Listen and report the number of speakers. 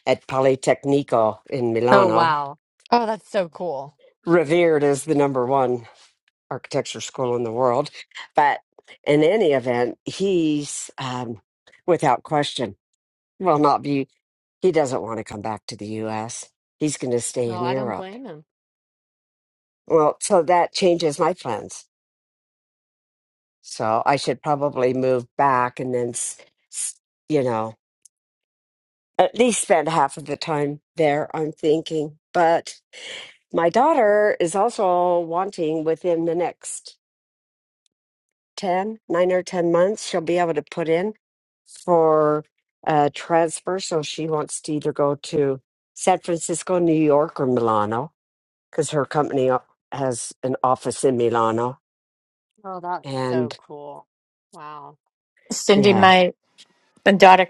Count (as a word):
three